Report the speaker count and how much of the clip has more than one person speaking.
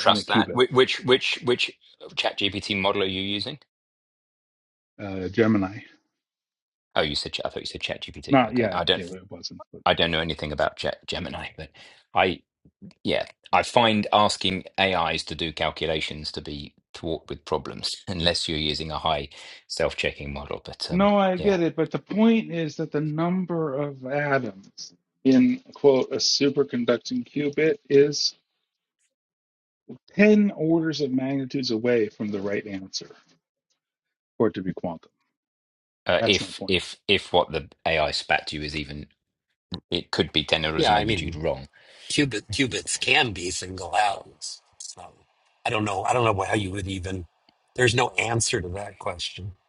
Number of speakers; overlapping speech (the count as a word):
three, about 6%